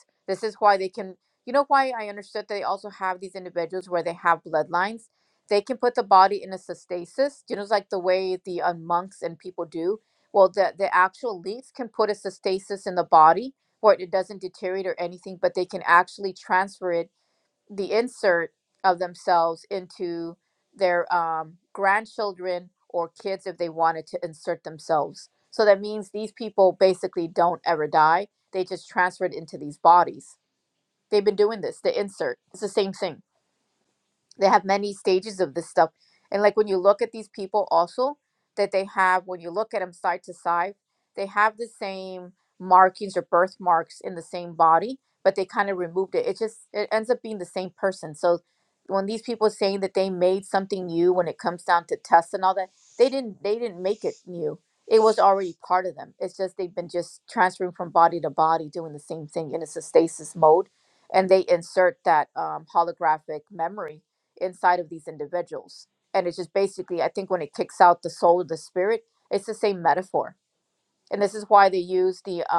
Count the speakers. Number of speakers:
1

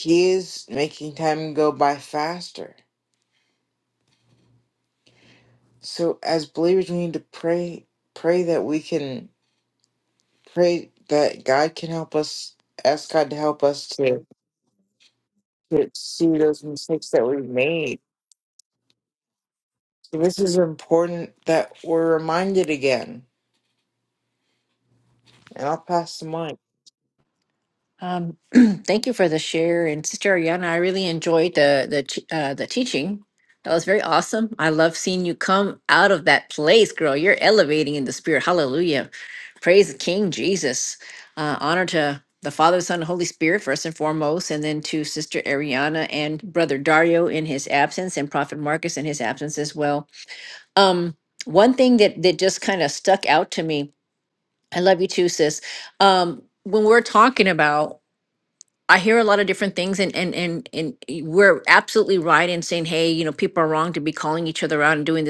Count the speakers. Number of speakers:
2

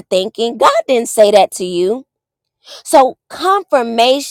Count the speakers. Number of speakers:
1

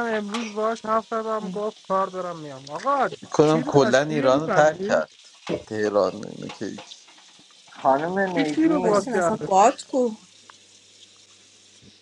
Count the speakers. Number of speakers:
4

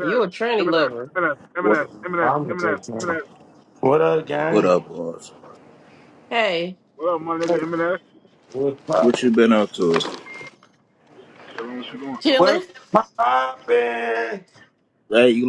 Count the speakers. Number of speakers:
4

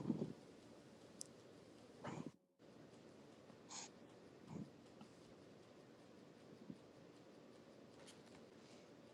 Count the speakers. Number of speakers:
0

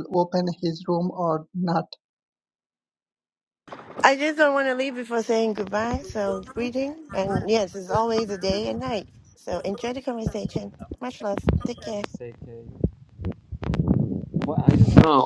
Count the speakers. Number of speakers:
3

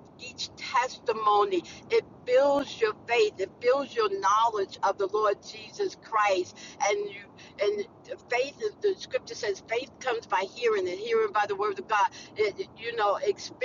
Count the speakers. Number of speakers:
1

